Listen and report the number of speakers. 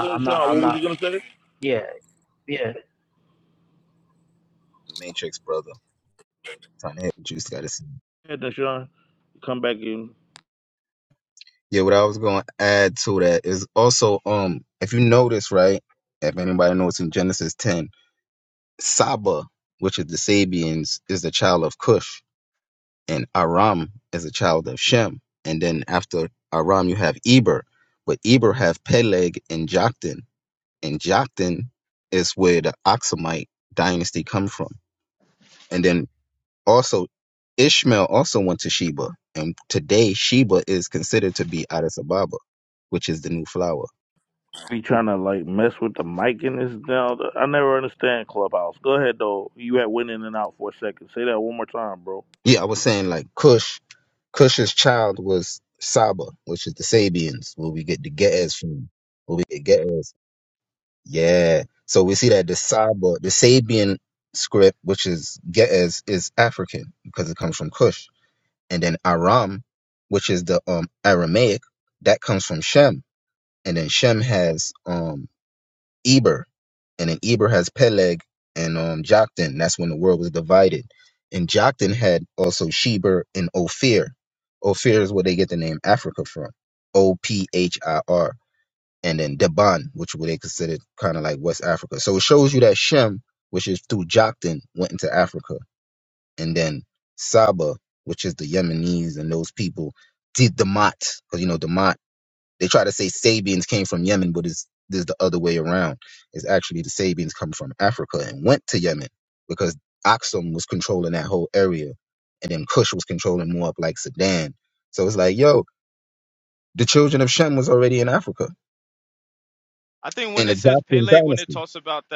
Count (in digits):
4